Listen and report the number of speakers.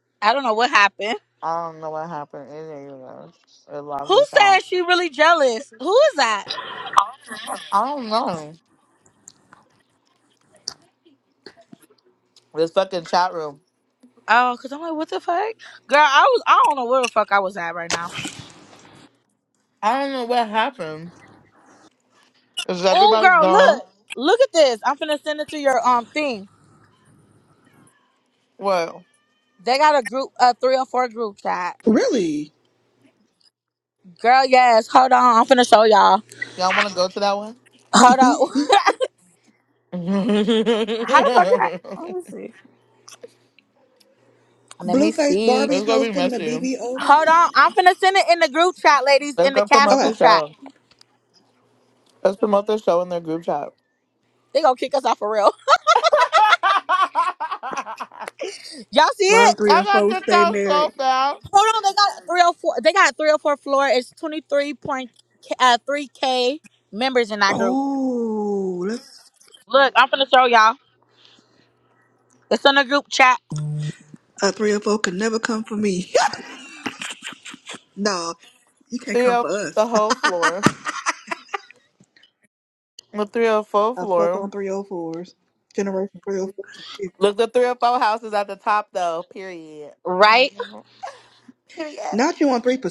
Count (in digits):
3